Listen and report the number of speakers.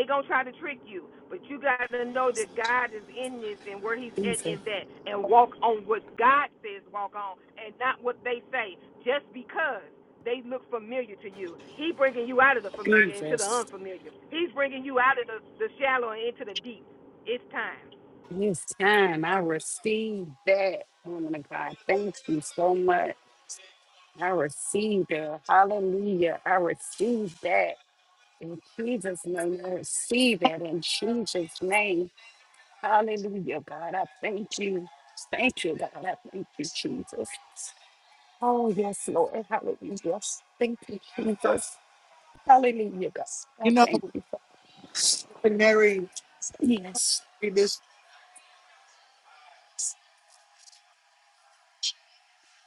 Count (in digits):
3